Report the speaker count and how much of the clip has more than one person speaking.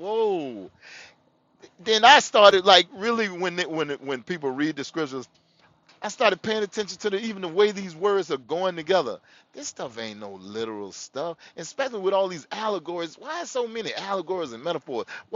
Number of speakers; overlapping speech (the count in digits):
1, no overlap